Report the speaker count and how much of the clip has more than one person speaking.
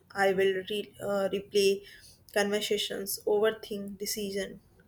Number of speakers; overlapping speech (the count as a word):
one, no overlap